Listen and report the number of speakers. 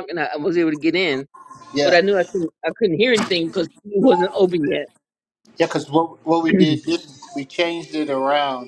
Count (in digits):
2